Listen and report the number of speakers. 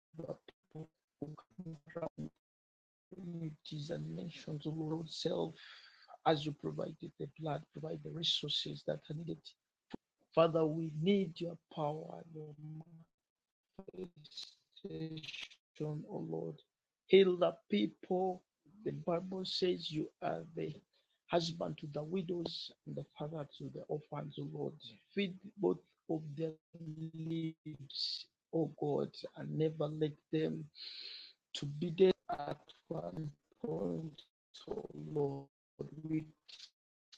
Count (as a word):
one